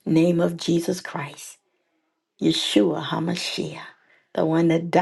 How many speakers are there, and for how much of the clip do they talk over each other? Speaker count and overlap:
one, no overlap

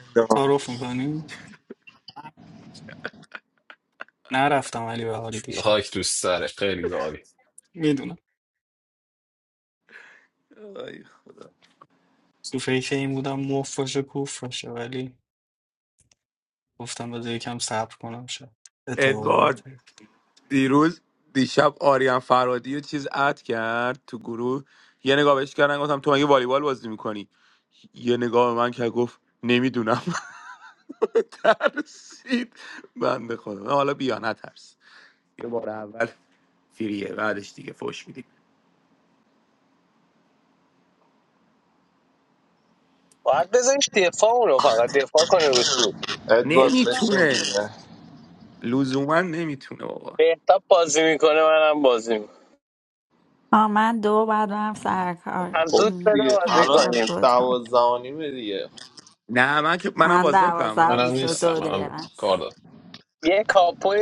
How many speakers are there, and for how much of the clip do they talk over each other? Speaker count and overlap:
six, about 9%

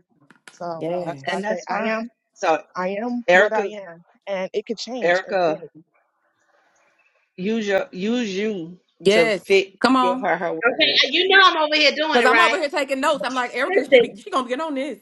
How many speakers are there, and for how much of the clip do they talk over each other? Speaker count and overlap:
four, about 25%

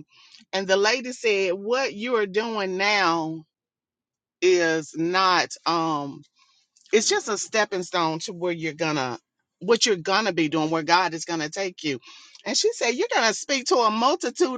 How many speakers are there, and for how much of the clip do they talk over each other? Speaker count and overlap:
one, no overlap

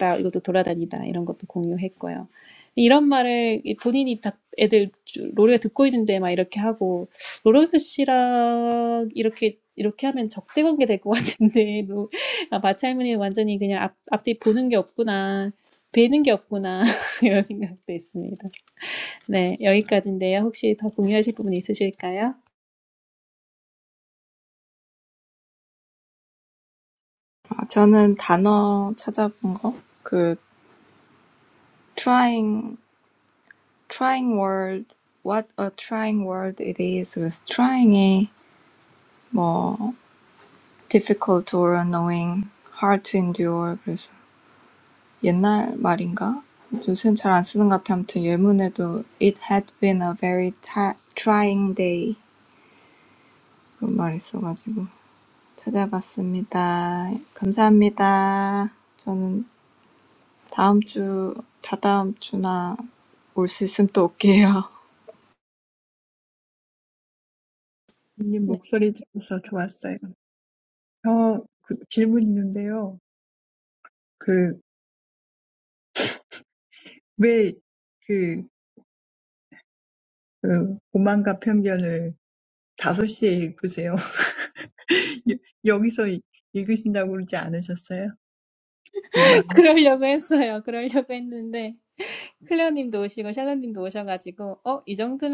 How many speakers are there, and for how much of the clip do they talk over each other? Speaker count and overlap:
three, no overlap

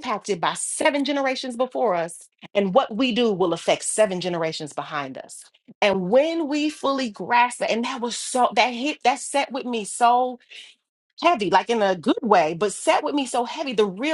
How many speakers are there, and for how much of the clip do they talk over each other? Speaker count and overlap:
one, no overlap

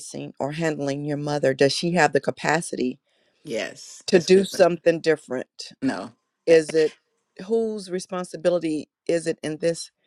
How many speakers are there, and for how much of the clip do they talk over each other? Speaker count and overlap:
two, about 6%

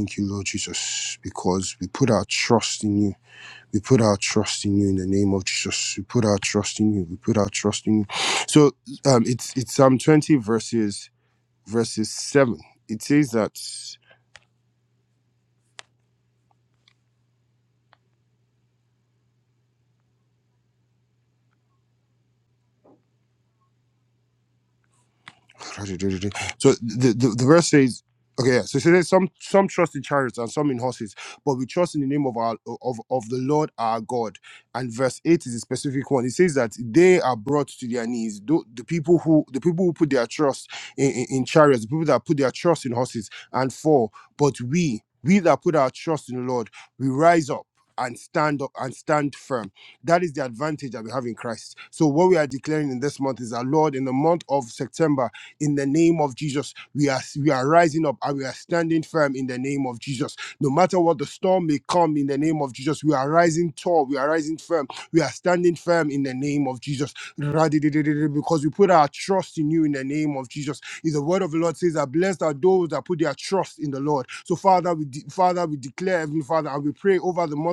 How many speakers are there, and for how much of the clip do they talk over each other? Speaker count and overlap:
one, no overlap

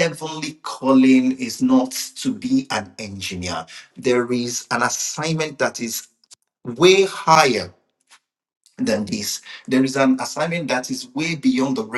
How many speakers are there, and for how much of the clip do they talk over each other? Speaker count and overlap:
one, no overlap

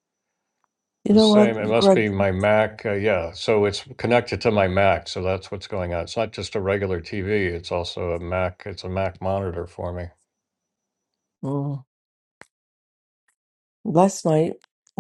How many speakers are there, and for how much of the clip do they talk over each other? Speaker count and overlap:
two, about 6%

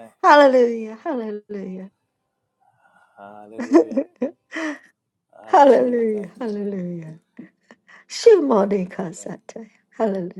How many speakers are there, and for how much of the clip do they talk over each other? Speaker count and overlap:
two, about 15%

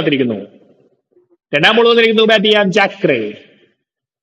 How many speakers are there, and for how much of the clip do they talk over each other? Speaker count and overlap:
one, no overlap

